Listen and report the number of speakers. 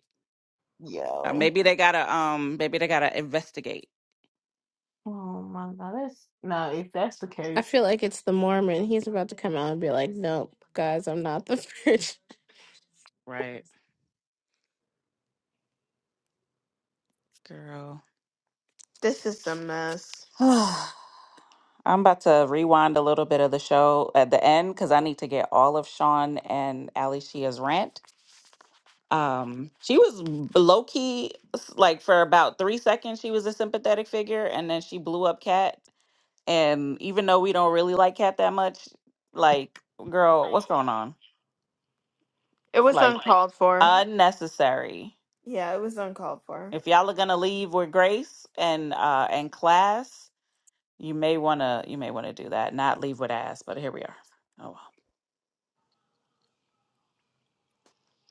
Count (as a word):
four